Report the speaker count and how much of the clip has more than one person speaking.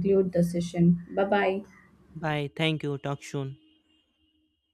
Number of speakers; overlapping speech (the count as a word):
two, no overlap